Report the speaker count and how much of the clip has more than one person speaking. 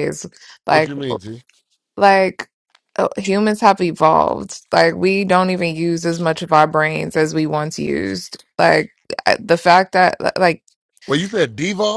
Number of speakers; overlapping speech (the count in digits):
2, about 1%